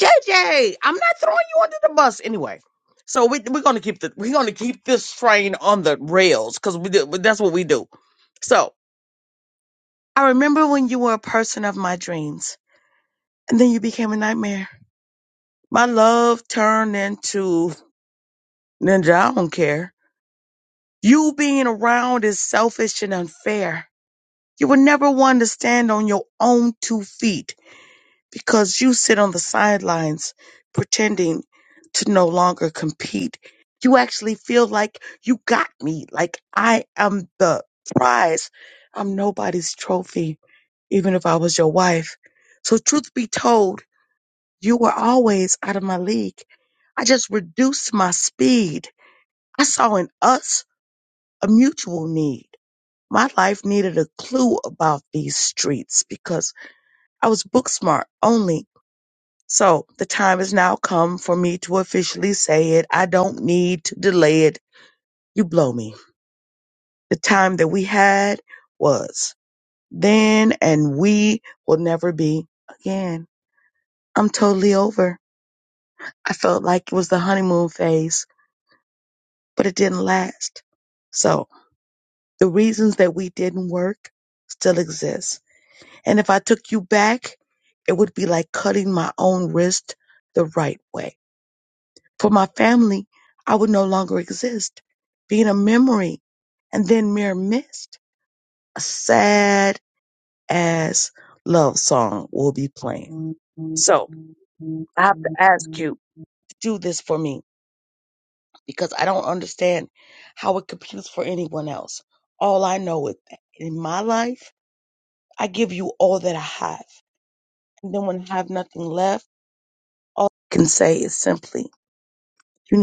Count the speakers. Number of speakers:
1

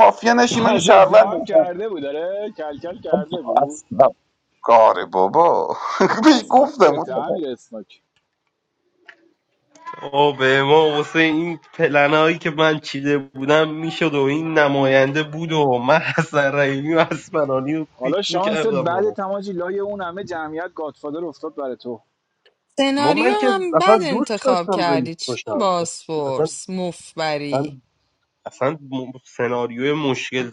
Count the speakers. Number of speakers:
4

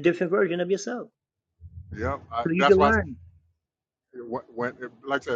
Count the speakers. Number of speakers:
2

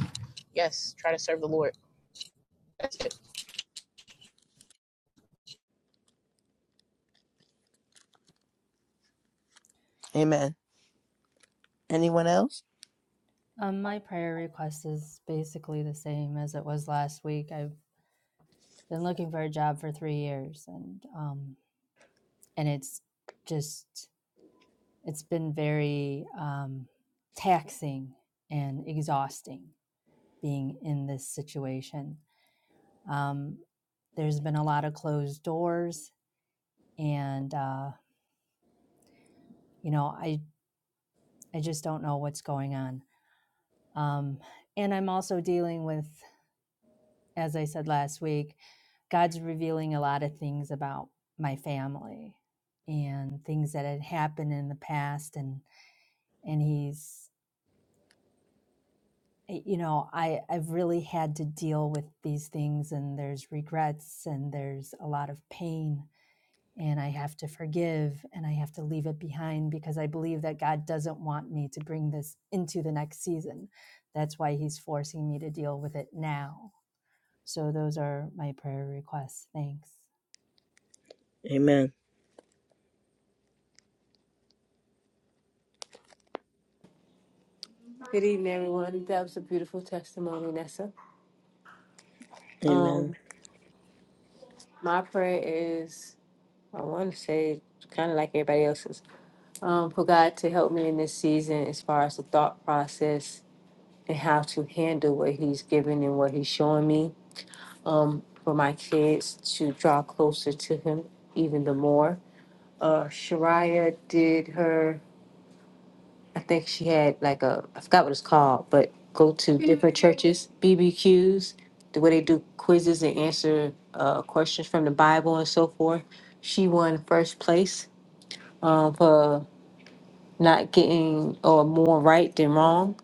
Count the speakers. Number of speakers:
4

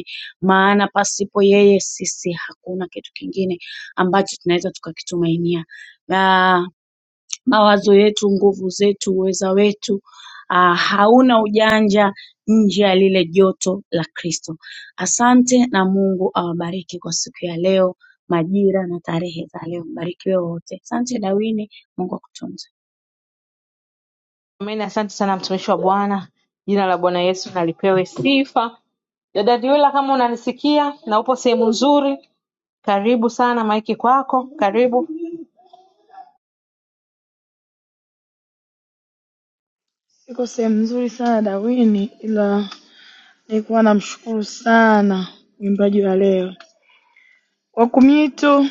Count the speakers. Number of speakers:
3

